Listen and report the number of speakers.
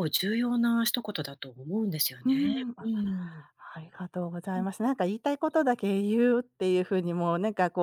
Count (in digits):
2